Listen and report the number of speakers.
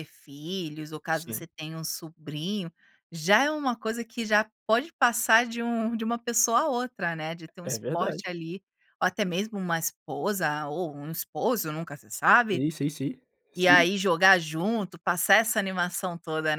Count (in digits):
2